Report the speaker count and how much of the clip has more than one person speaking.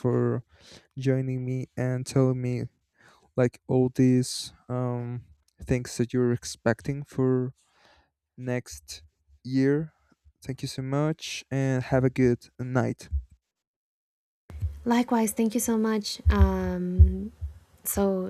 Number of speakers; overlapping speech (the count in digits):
2, no overlap